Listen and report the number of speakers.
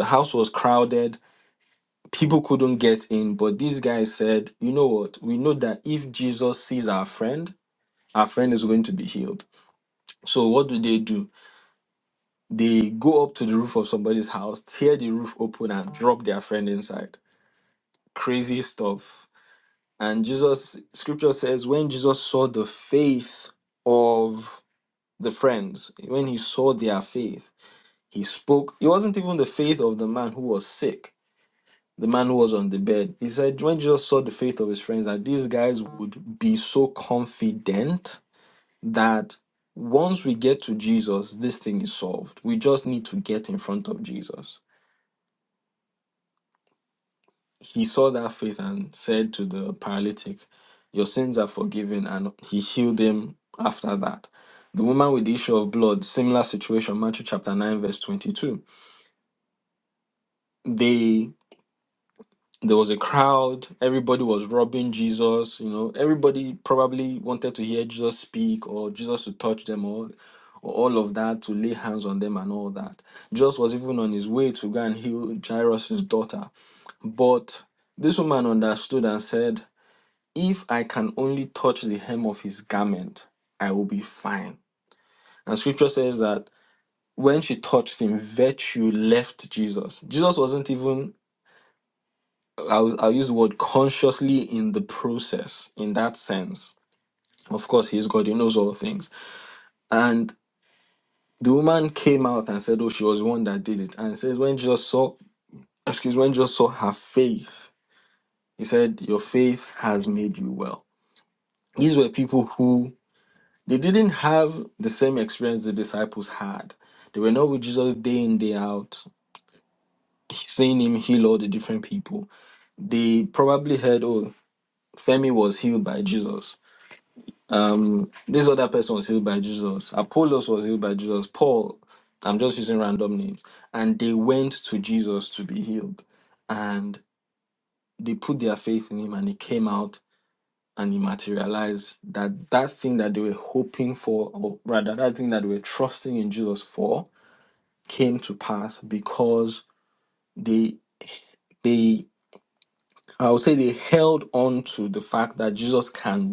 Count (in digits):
1